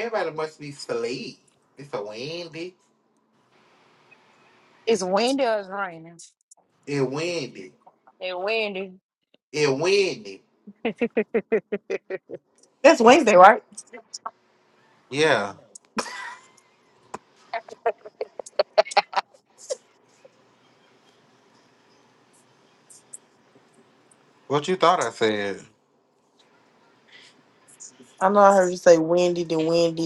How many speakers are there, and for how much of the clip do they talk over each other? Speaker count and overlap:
3, no overlap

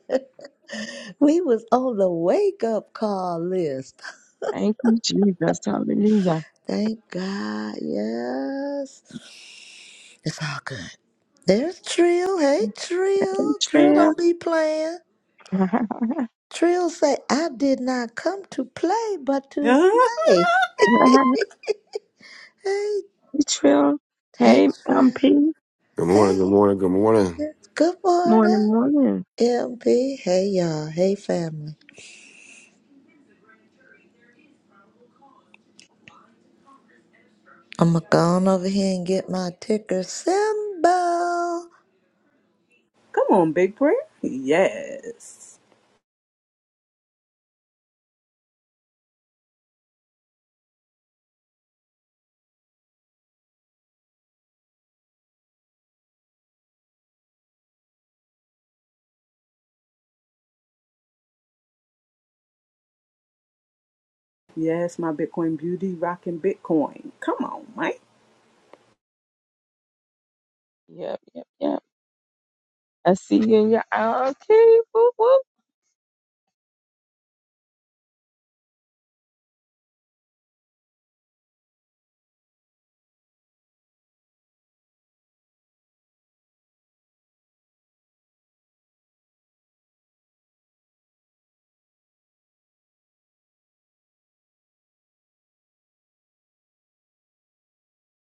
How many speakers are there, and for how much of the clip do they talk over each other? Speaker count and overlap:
4, about 3%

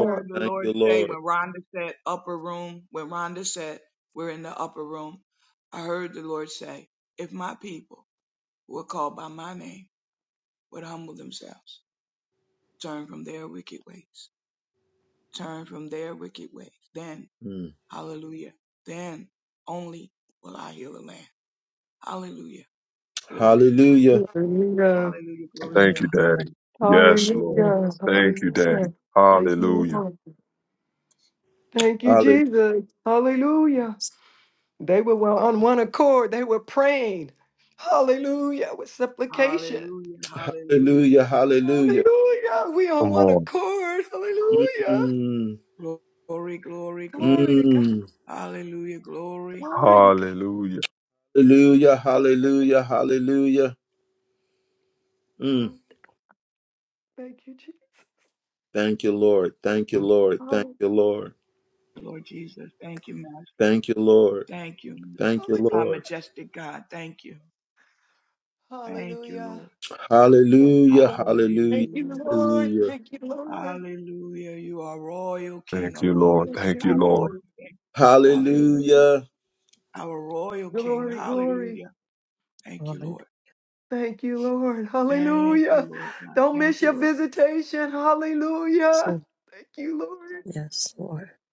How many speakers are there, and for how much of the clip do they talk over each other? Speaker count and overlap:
5, about 20%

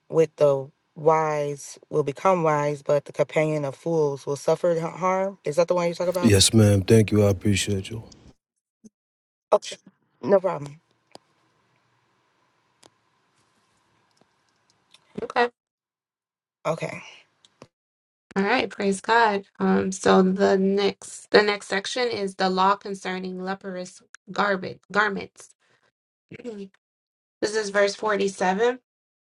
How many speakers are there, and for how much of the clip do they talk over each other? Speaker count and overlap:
3, under 1%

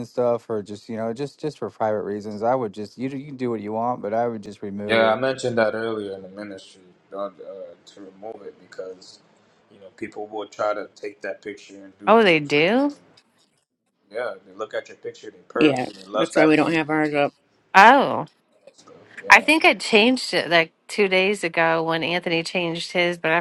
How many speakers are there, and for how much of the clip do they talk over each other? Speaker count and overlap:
4, about 11%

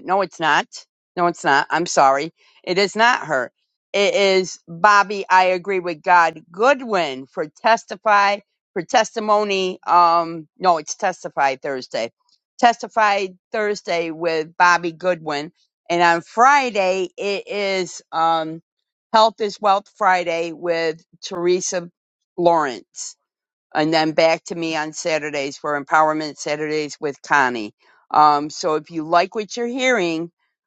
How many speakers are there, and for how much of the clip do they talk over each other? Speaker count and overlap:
1, no overlap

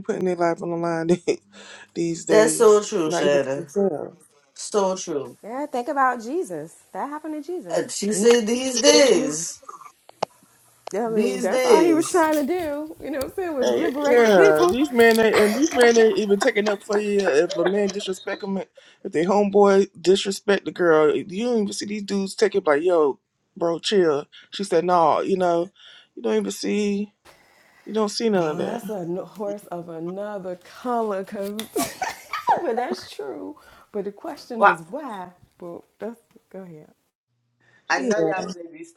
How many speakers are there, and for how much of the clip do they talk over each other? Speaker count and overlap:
4, about 11%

